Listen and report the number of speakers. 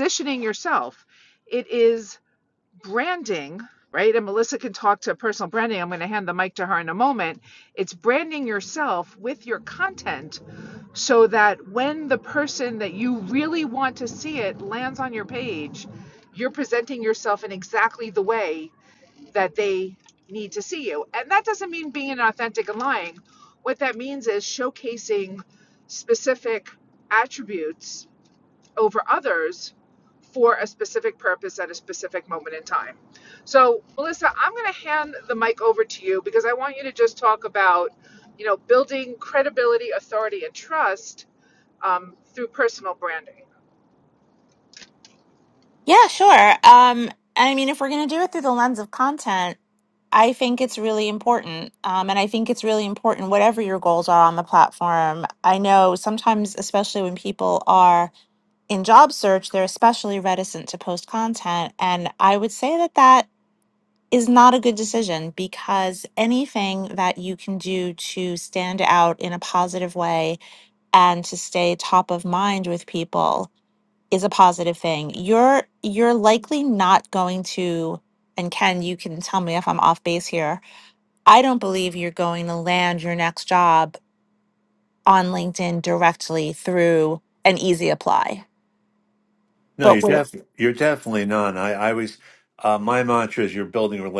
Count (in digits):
3